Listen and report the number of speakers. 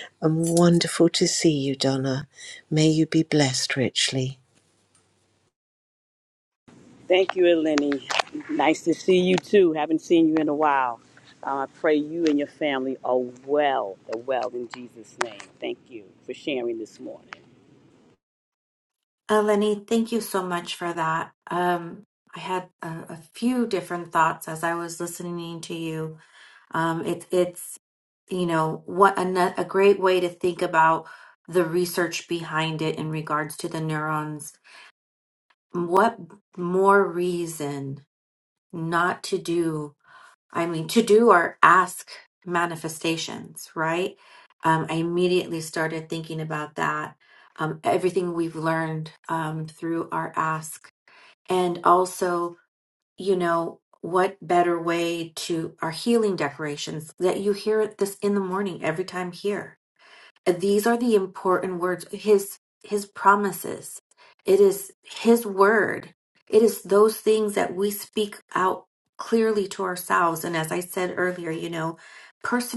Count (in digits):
3